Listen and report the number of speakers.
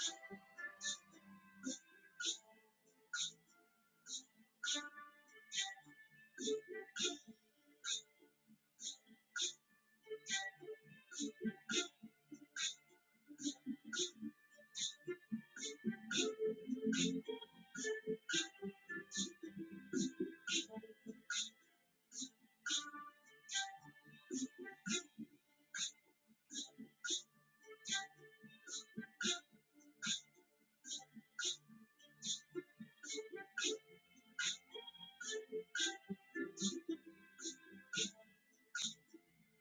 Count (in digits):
0